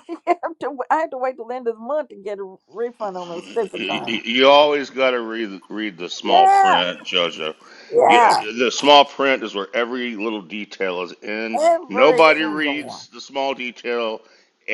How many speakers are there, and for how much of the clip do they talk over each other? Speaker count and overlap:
2, about 20%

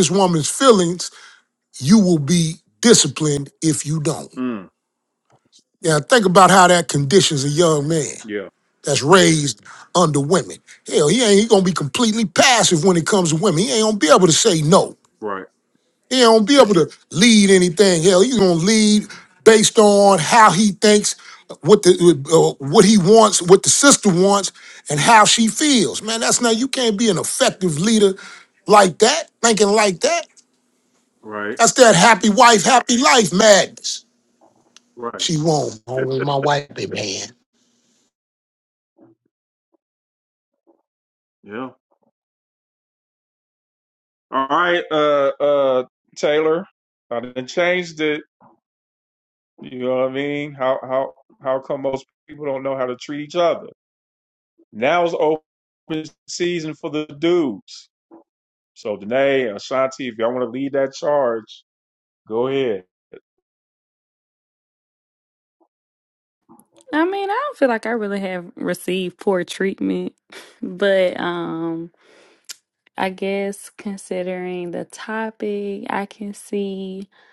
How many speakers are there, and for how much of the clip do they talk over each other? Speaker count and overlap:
3, under 1%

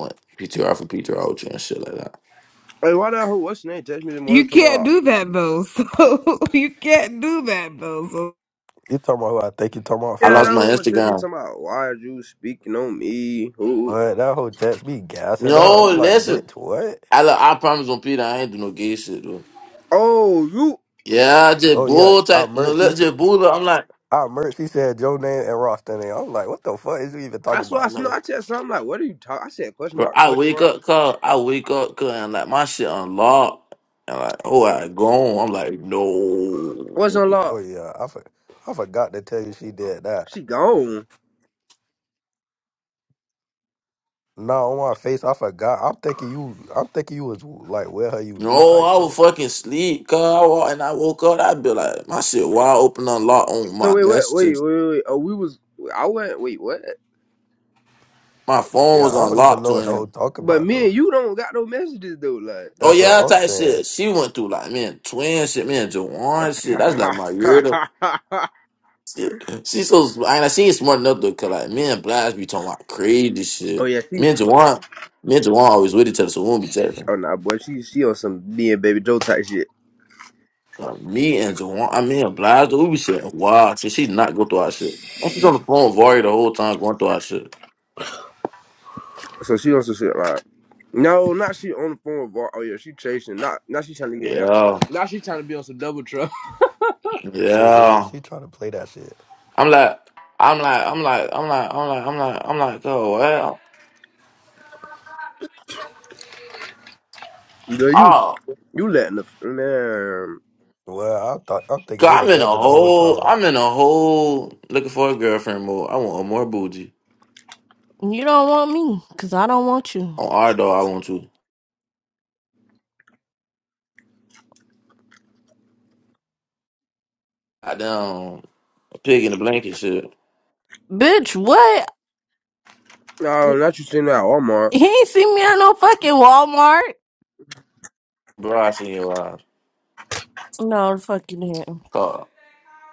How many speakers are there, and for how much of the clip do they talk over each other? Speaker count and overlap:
5, about 9%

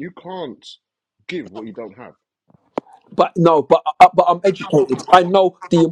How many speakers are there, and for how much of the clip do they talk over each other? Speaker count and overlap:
2, no overlap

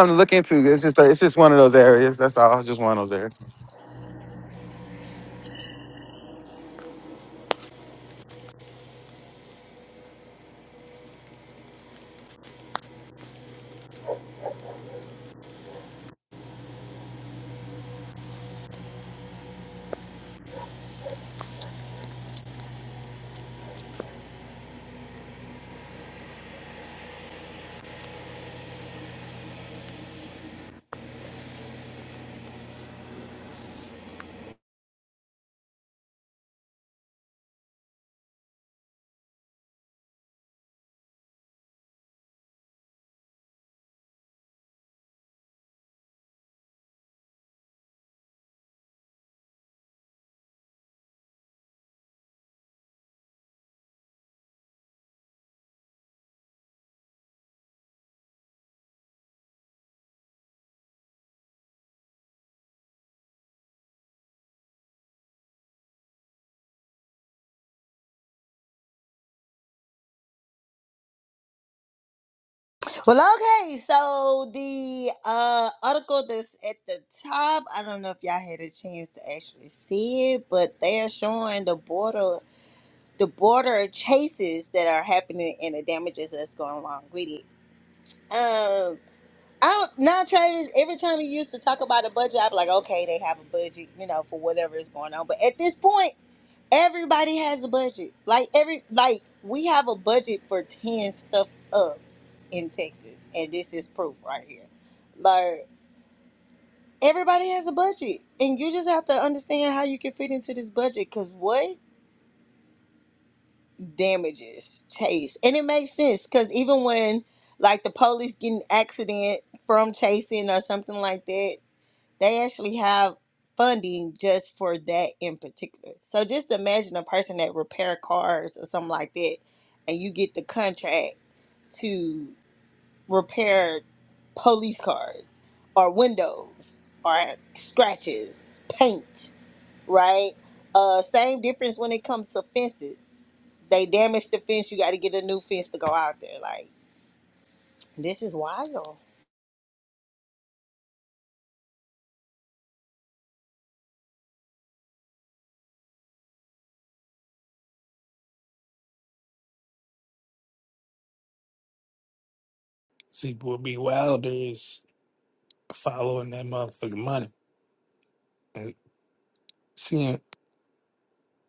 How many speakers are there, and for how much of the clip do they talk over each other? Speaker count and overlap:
3, no overlap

